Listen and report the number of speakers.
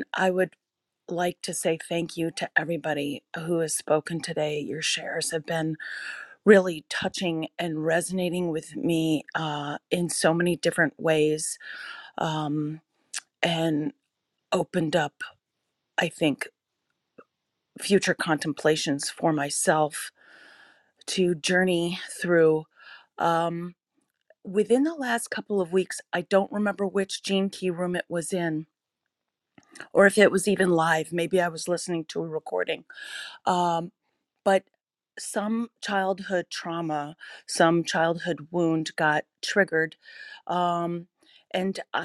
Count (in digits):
1